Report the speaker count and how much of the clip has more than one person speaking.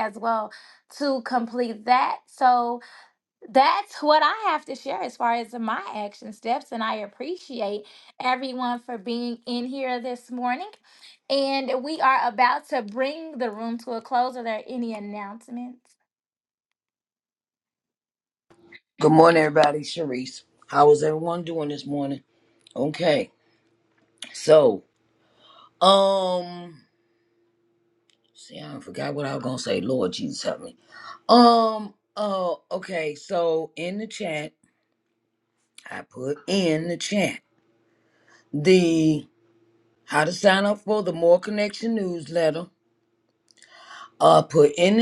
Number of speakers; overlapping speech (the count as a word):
two, no overlap